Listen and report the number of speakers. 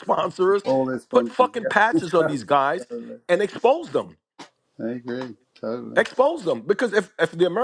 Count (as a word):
two